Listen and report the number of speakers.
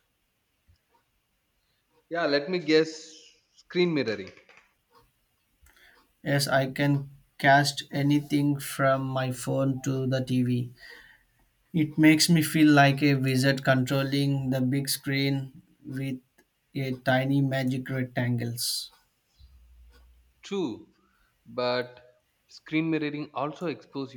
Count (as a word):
two